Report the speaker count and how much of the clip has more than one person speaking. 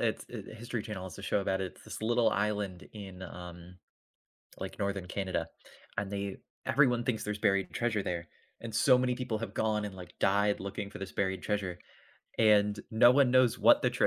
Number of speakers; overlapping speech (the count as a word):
one, no overlap